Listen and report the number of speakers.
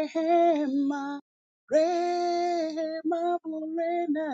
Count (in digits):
1